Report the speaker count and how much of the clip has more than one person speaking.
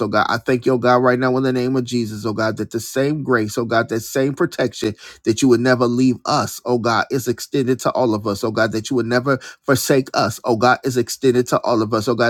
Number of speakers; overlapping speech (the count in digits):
1, no overlap